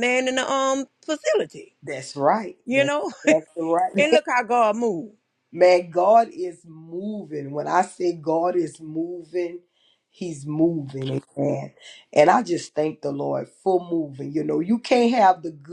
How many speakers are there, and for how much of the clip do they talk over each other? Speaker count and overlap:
two, about 2%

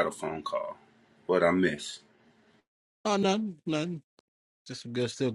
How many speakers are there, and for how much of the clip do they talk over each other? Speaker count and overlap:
two, no overlap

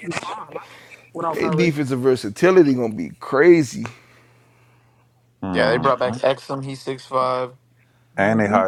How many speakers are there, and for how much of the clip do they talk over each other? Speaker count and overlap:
four, about 12%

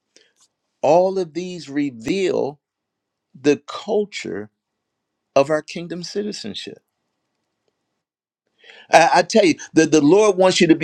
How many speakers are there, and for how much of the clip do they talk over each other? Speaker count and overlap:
one, no overlap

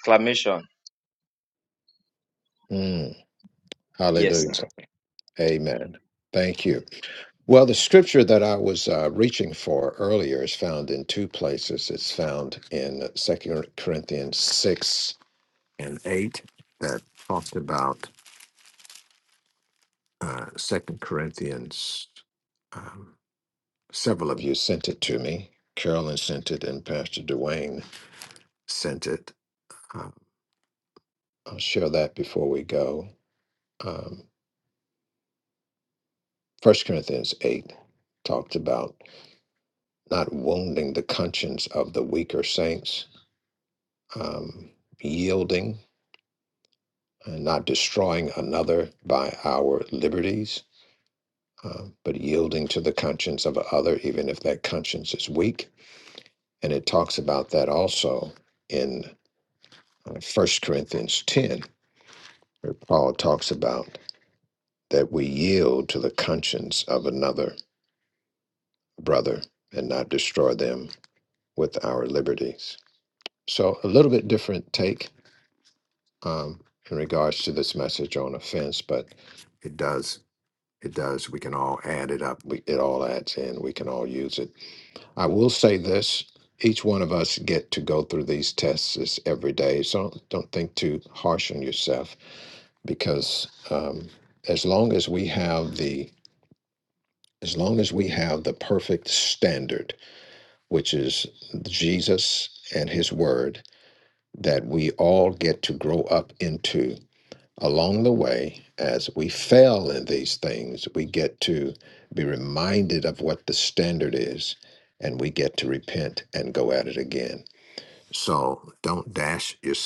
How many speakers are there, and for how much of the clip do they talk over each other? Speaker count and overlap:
two, under 1%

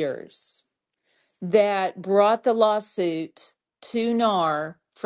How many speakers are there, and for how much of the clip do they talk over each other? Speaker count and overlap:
one, no overlap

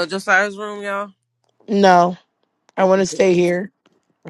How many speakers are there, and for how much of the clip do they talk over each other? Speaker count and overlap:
two, about 13%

